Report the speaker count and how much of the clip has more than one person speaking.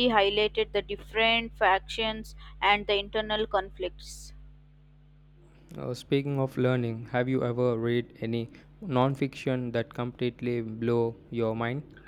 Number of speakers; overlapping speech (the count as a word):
two, no overlap